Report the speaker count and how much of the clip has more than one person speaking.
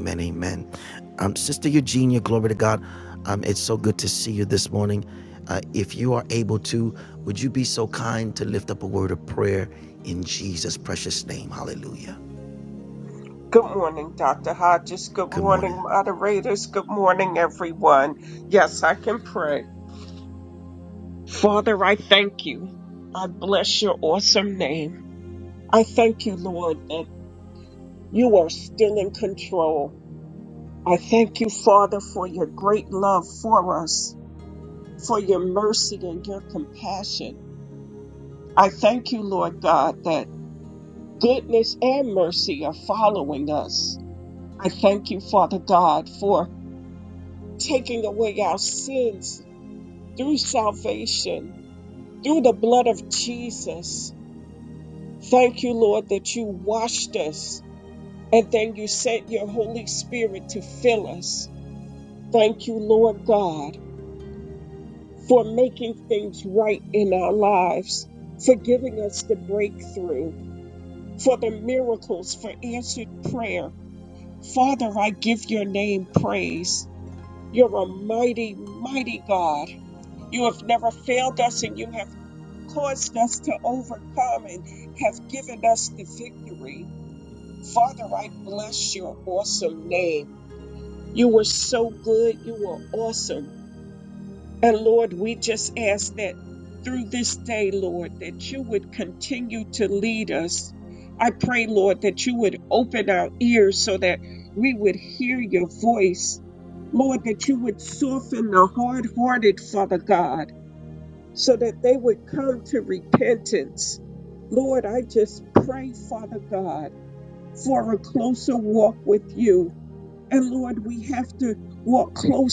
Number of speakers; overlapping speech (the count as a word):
two, under 1%